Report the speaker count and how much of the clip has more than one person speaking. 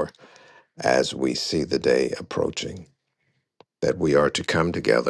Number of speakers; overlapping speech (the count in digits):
1, no overlap